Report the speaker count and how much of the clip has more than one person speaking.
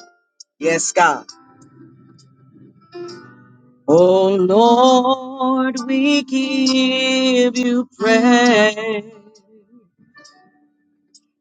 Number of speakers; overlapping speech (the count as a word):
one, no overlap